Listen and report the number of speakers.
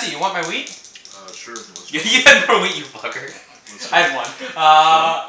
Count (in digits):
3